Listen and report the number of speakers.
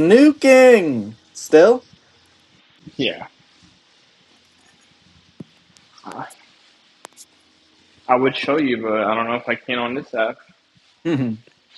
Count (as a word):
two